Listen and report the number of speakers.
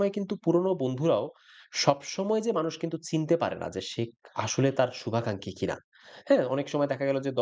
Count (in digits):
1